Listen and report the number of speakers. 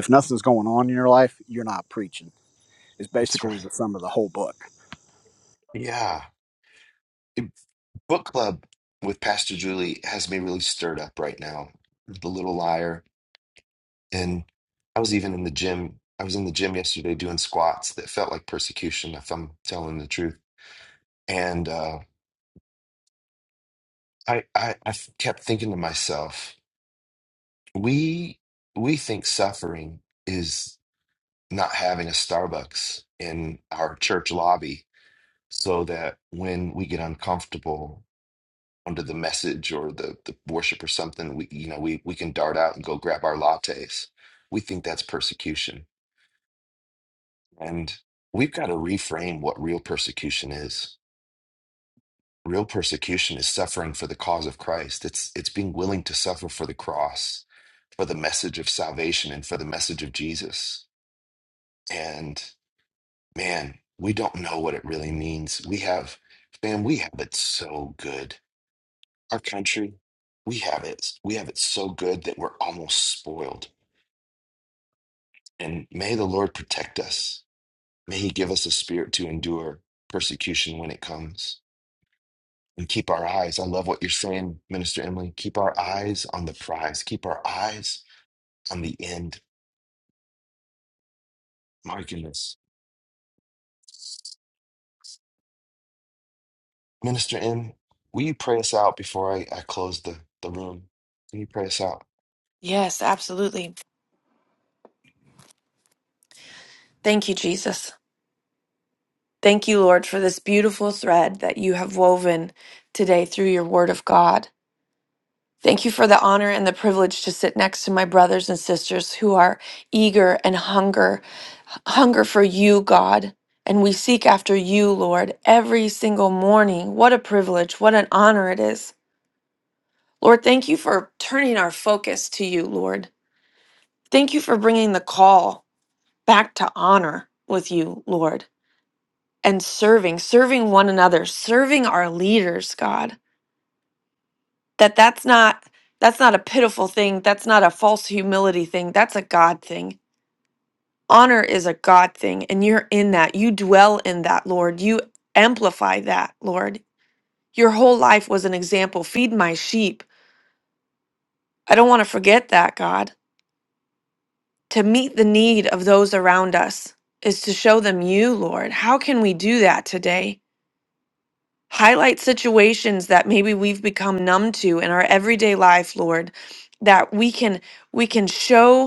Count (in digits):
3